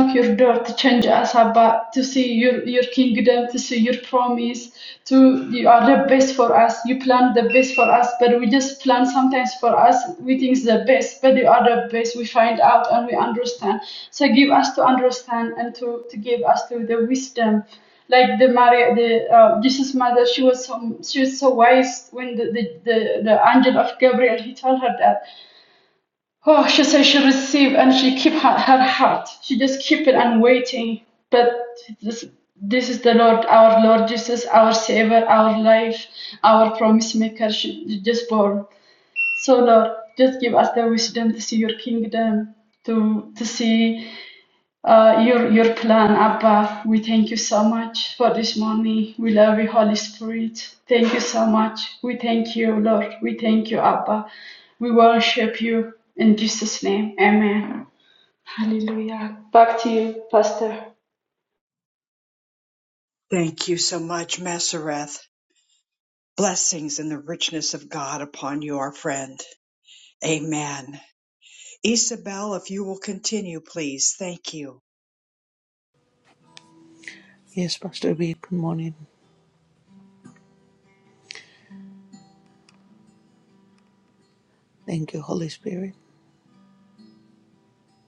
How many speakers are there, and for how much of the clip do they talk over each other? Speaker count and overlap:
3, no overlap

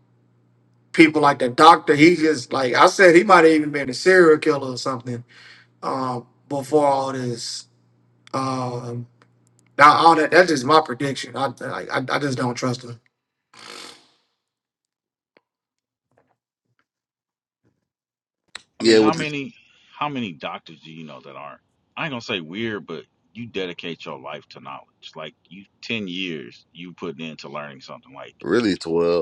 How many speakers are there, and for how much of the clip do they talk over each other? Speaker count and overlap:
3, about 2%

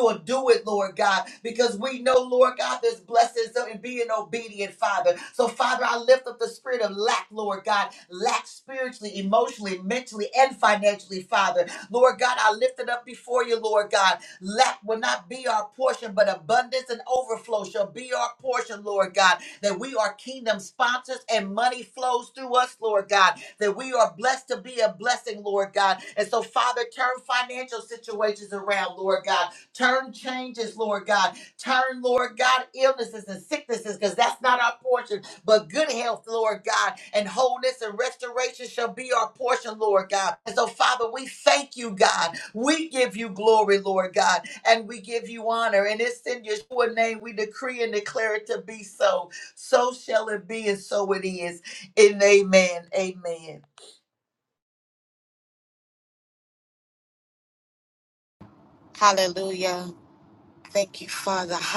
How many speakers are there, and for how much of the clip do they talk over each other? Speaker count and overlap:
2, no overlap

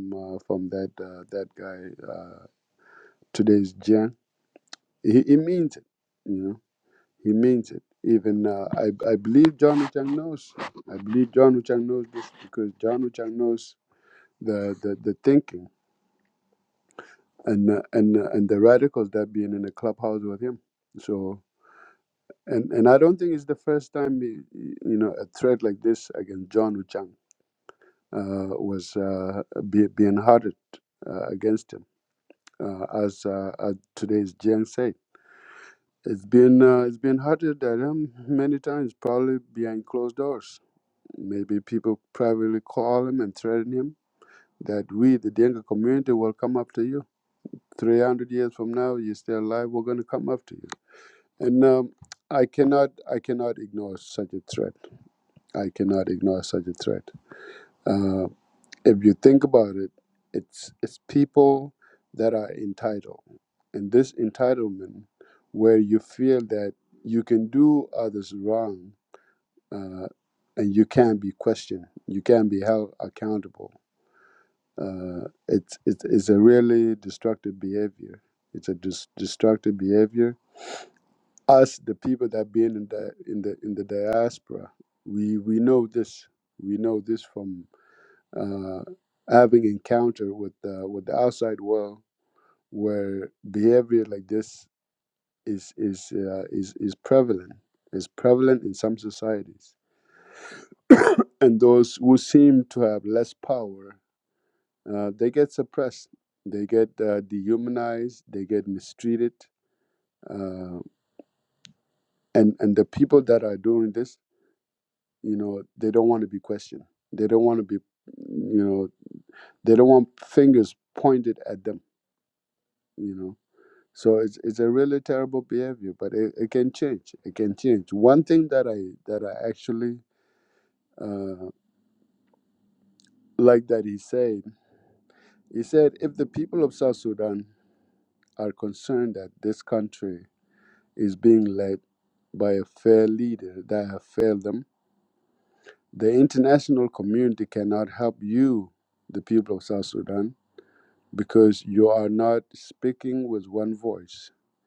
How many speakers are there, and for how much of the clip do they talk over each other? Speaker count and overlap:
1, no overlap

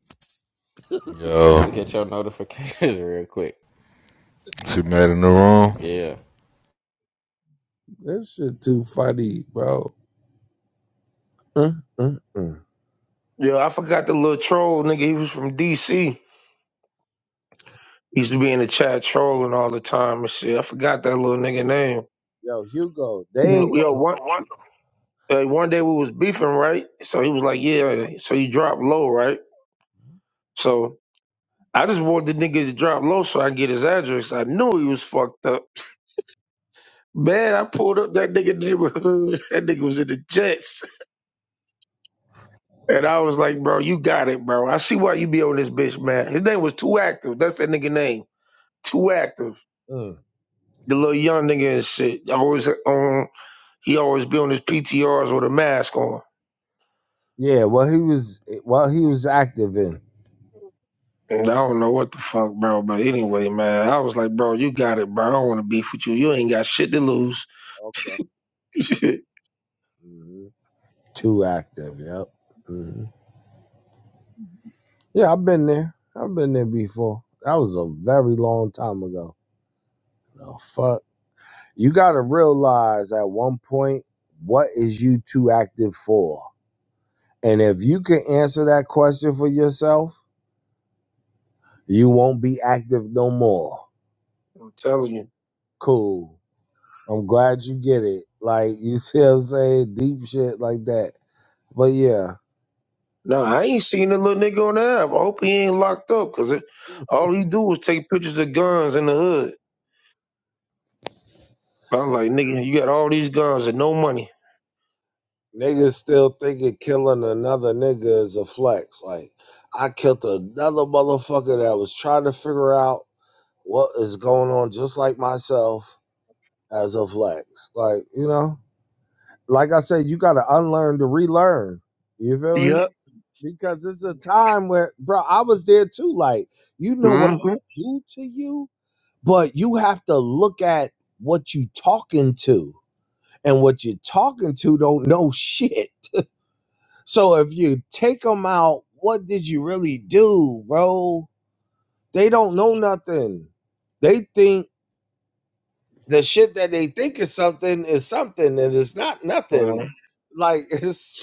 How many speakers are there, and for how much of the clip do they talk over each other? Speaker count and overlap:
4, about 1%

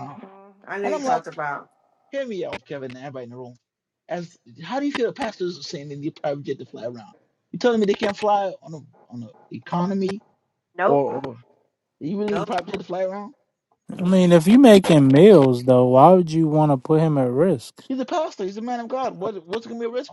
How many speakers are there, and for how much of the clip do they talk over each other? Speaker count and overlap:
3, about 5%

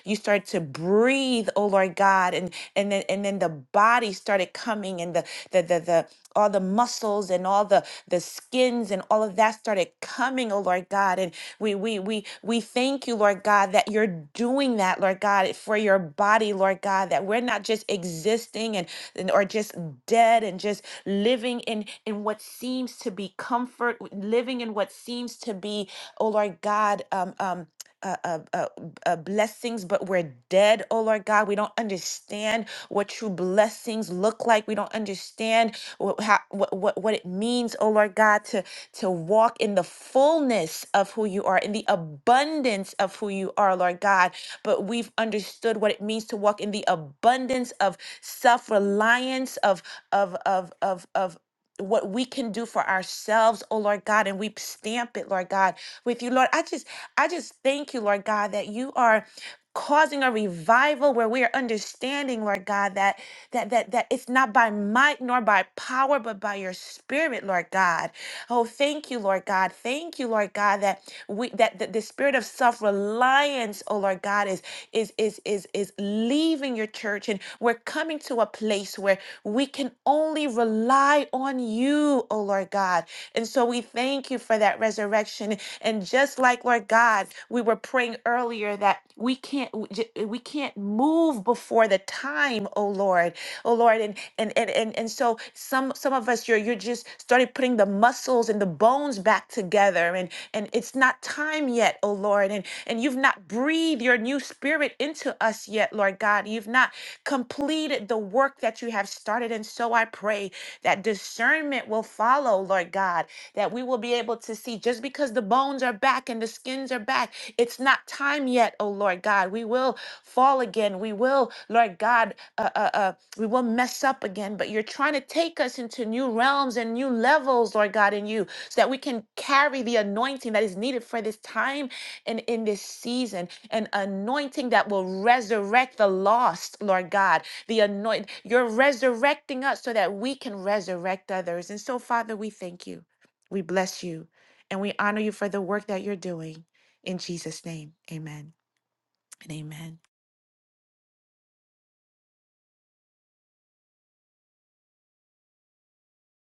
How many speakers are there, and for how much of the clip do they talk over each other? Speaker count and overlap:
1, no overlap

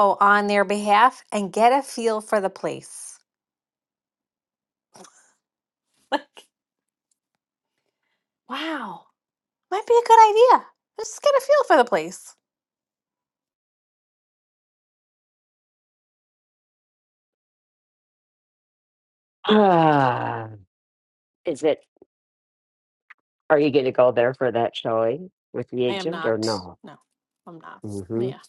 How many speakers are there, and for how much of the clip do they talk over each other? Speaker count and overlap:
2, about 3%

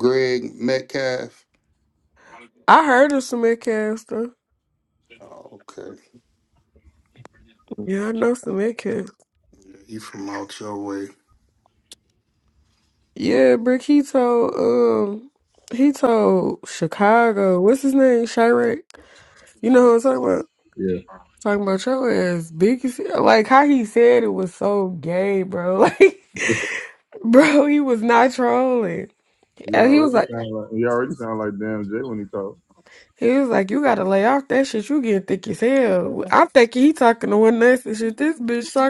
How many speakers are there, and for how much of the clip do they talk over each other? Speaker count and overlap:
3, about 2%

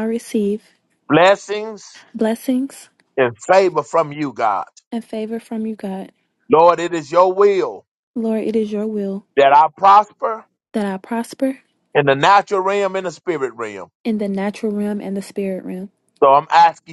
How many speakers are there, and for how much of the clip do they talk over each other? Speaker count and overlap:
2, no overlap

